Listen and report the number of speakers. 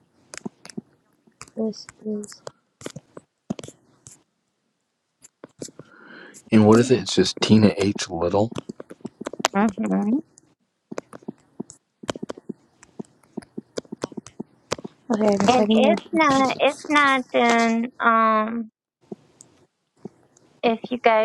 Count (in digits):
3